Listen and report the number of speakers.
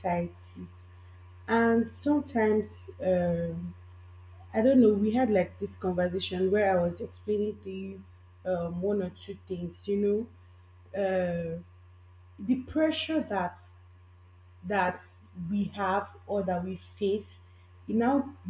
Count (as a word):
one